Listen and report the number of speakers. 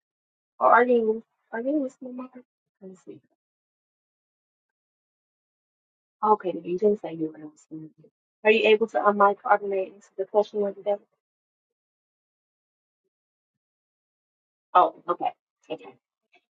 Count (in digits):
1